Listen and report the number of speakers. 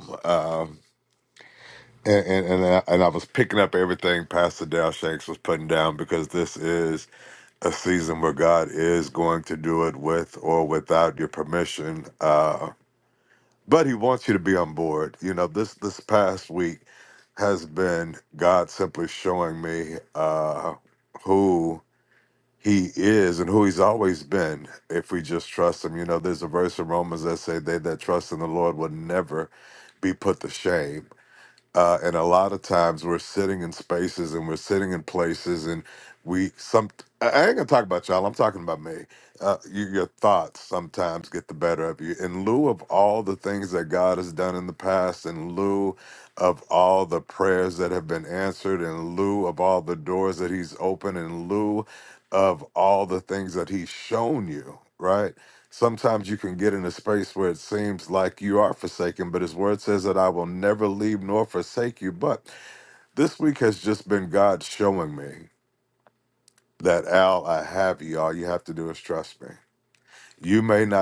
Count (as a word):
one